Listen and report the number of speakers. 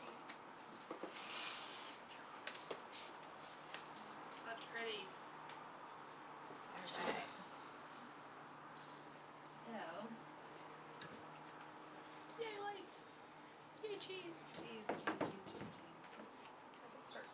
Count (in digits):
2